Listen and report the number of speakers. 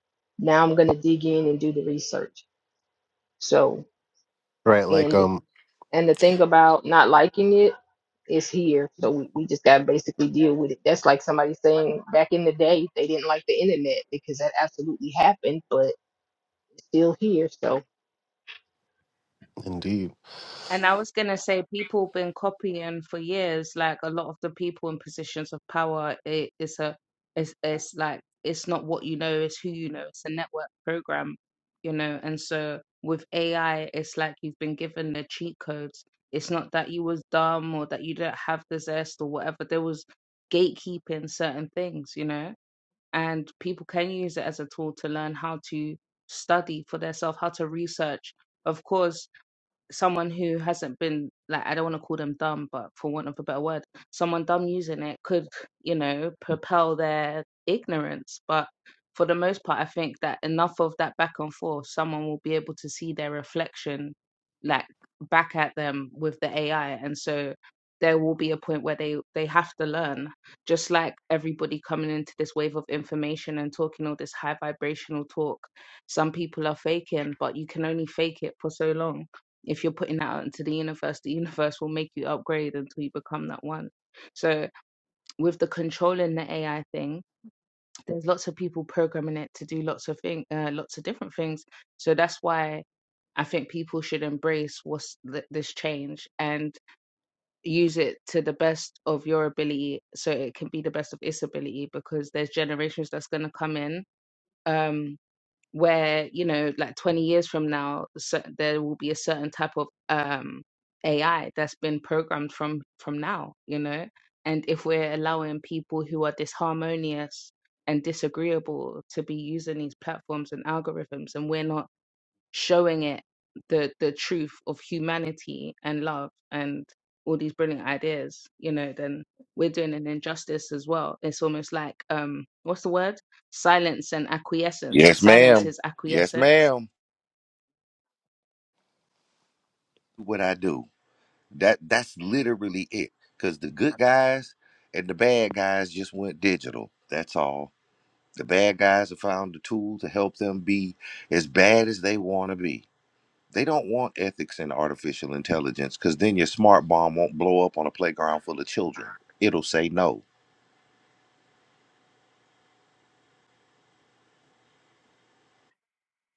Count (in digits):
4